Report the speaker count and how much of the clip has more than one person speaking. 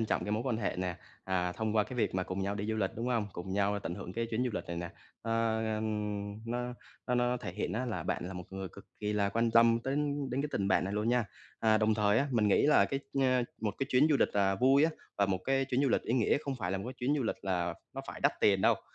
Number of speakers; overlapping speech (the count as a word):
one, no overlap